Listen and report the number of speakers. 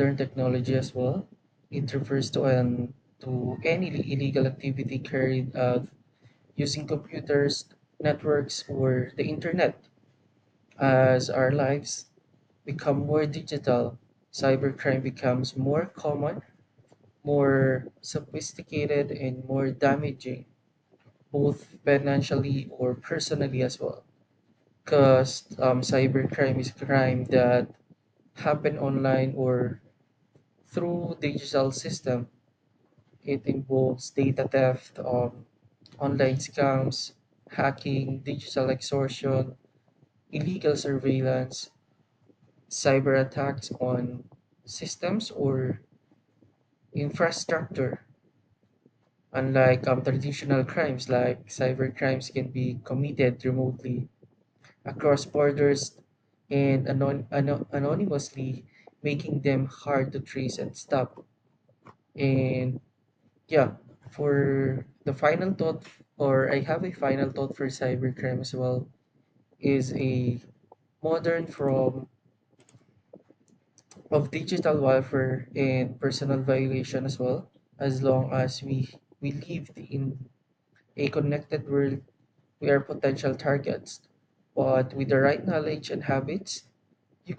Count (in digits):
1